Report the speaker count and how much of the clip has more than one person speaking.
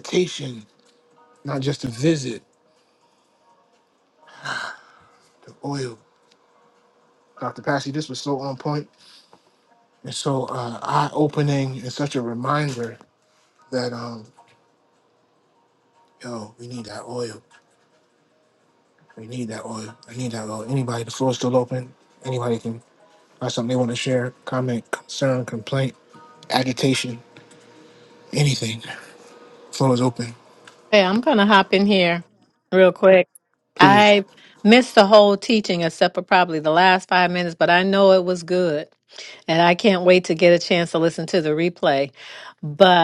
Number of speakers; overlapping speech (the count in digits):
2, about 1%